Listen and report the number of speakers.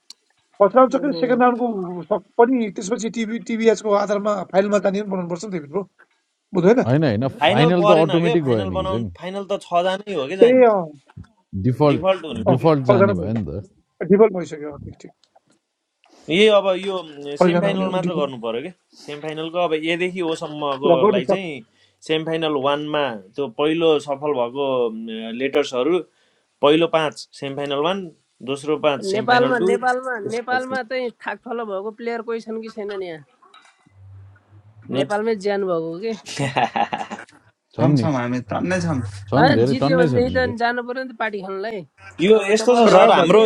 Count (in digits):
5